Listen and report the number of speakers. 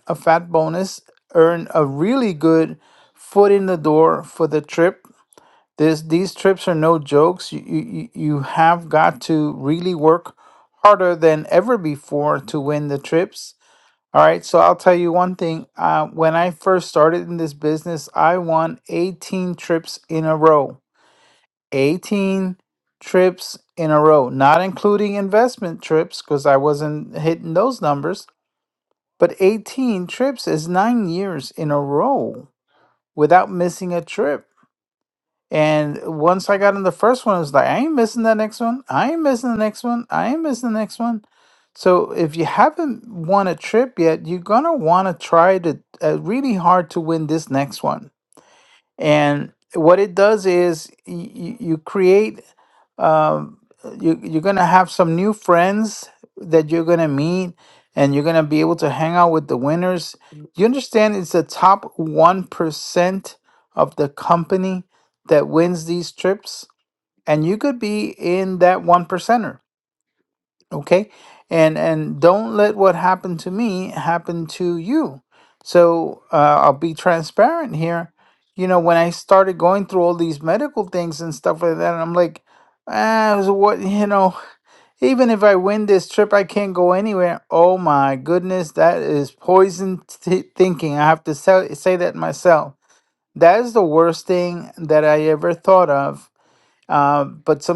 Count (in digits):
1